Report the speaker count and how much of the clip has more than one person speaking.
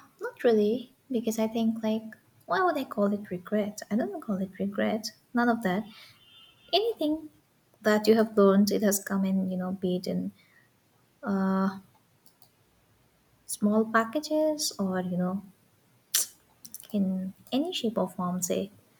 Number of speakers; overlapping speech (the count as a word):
one, no overlap